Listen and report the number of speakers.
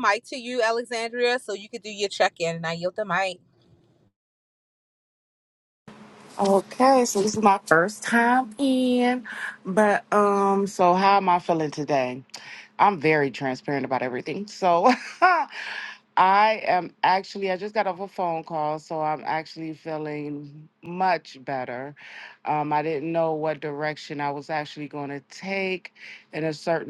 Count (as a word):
two